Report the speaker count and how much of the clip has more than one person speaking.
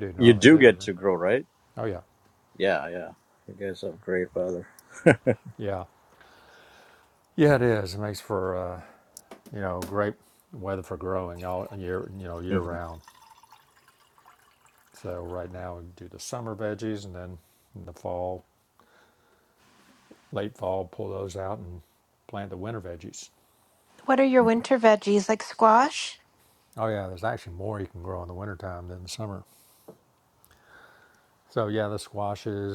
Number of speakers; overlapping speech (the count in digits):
3, about 2%